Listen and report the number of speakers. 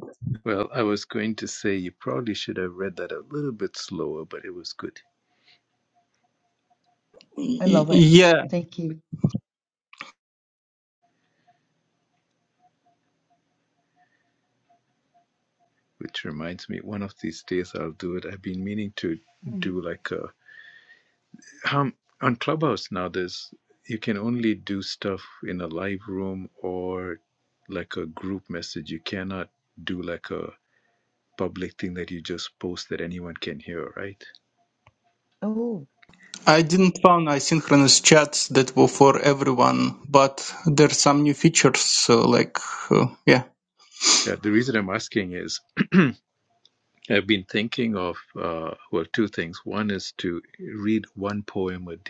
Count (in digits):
3